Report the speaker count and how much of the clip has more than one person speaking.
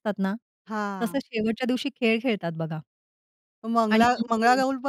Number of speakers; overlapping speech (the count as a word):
two, about 18%